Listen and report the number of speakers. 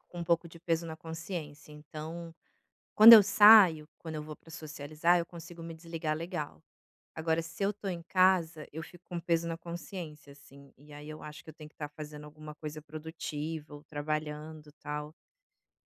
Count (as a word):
one